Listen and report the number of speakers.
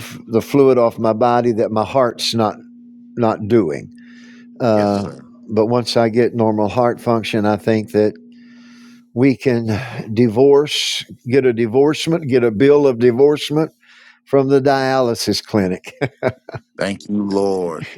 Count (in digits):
2